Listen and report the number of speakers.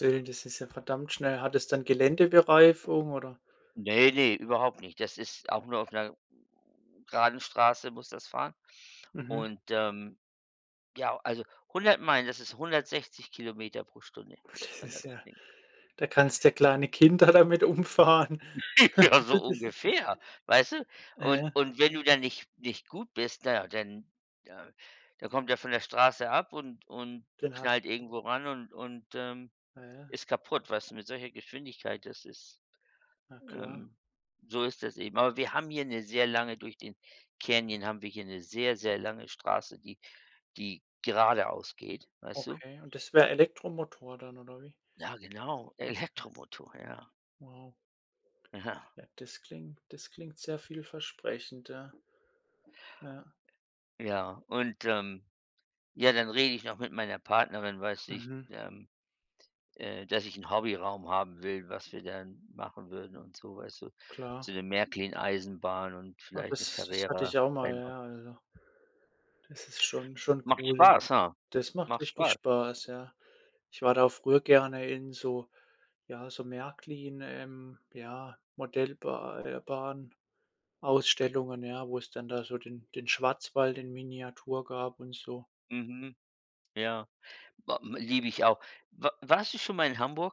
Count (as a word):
two